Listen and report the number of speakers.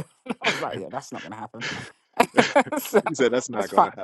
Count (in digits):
2